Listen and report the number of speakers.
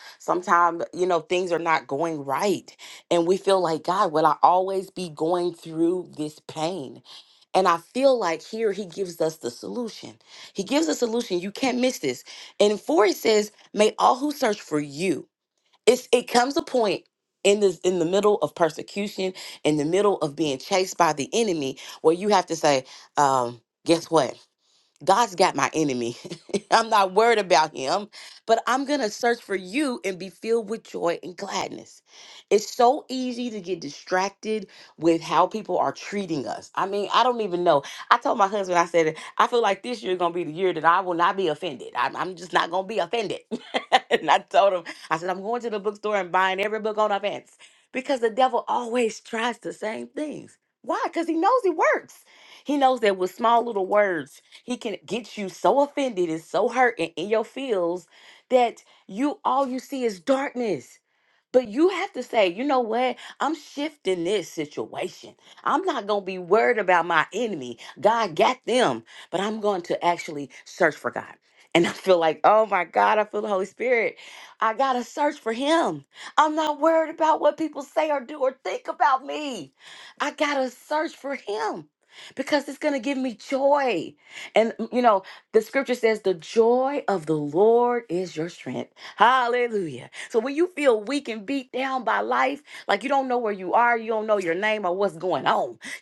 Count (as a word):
one